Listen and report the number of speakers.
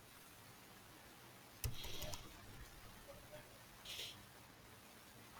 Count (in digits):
0